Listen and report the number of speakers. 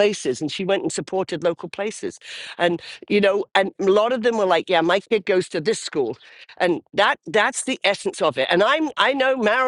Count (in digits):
1